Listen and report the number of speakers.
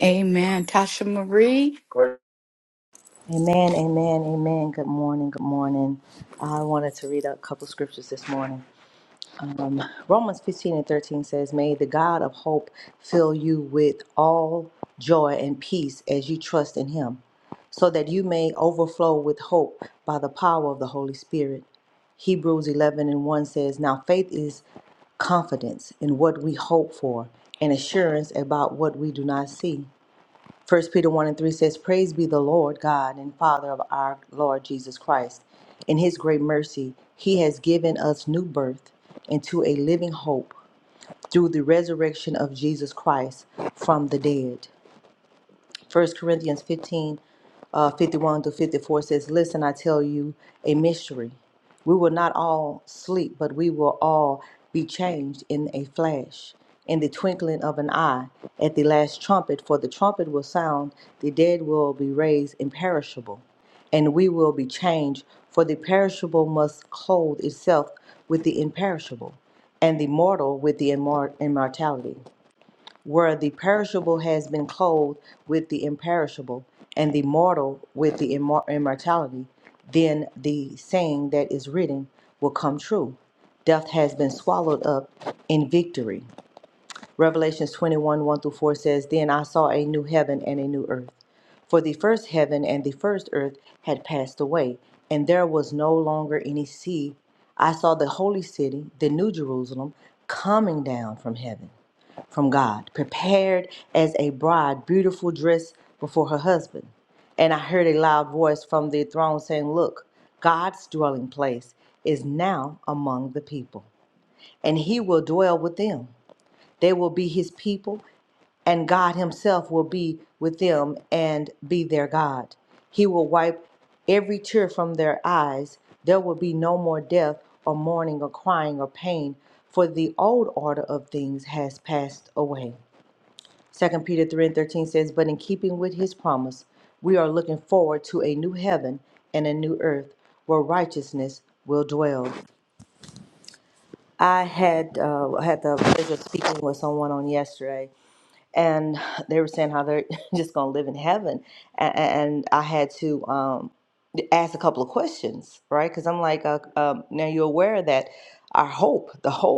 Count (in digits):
2